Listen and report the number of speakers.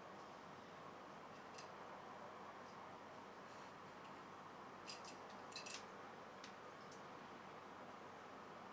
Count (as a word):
zero